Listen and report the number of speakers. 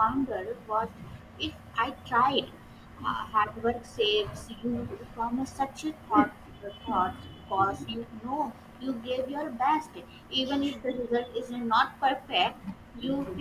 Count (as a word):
one